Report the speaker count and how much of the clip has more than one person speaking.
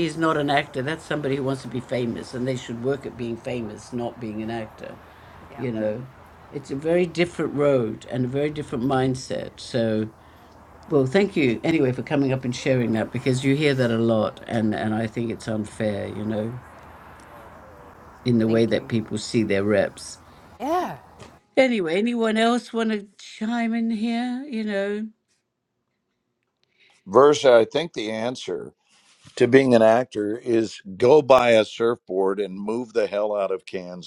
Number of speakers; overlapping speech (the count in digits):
3, about 2%